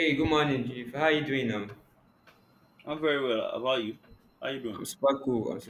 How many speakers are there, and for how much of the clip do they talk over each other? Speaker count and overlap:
2, about 1%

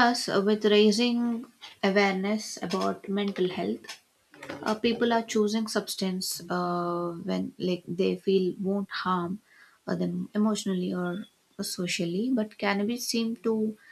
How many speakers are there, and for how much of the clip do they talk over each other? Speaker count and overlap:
1, no overlap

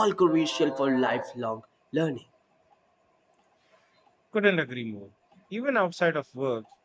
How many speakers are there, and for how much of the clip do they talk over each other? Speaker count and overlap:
2, no overlap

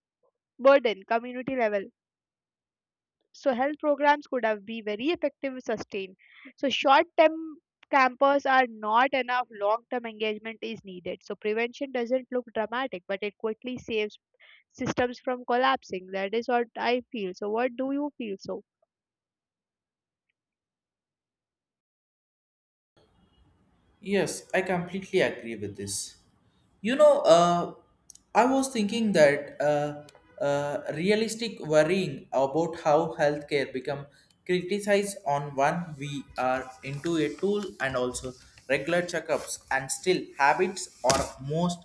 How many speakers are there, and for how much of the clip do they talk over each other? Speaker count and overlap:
2, no overlap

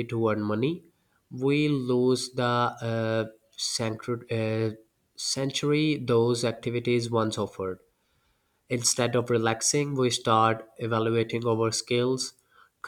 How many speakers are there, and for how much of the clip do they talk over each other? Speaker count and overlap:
1, no overlap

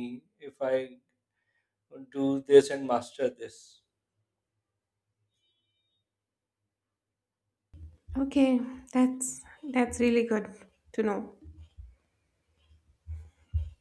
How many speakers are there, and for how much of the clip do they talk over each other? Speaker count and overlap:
2, no overlap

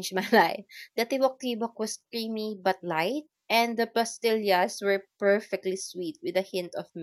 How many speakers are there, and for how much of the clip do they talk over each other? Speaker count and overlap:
1, no overlap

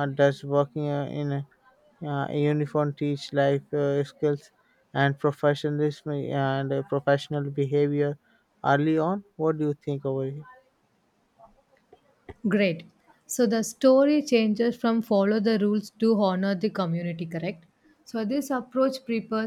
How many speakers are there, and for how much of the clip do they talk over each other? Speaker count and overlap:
2, no overlap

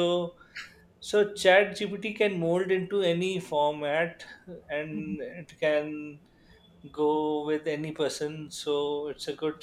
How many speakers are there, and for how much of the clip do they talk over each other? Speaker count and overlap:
1, no overlap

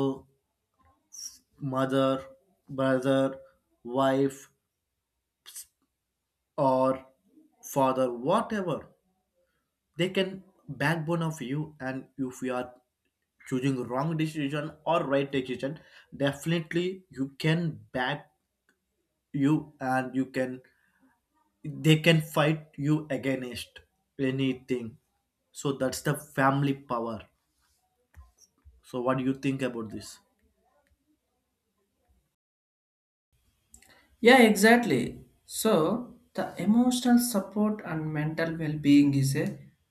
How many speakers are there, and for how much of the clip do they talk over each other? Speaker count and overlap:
2, no overlap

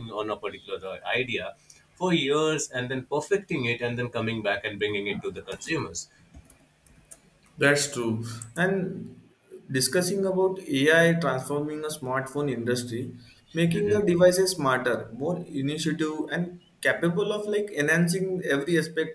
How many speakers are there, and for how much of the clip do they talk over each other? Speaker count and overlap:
2, about 2%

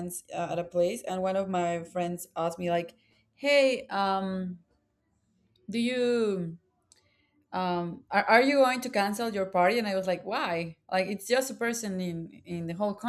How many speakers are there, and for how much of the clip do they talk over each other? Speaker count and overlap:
1, no overlap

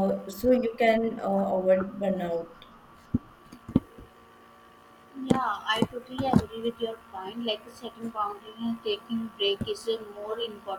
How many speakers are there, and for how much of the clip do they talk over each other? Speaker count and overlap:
2, no overlap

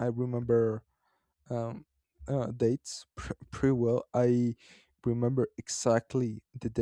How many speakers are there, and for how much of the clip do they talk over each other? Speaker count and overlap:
1, no overlap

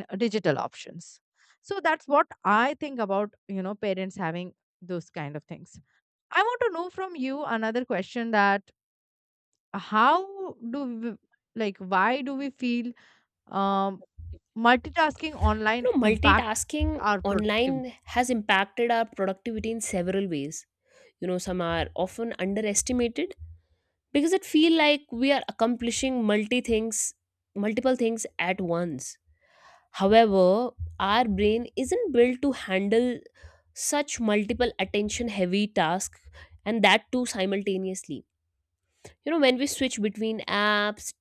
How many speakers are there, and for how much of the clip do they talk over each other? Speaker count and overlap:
2, about 4%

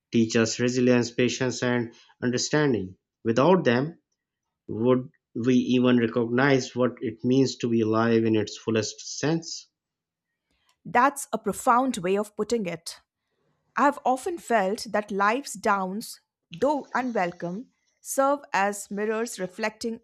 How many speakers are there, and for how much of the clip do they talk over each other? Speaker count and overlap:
2, no overlap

